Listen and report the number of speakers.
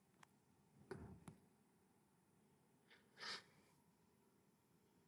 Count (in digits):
0